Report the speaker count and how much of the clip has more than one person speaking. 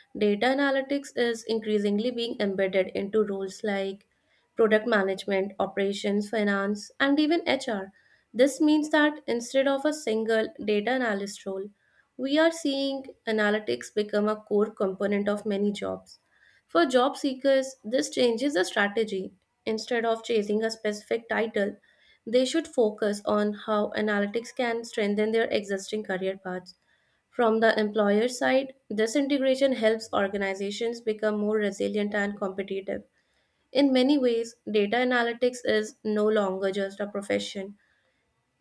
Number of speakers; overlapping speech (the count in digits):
1, no overlap